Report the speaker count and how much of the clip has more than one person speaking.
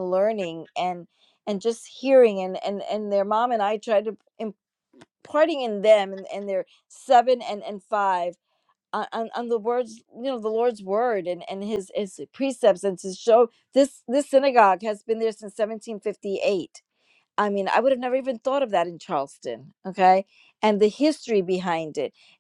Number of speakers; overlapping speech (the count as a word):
one, no overlap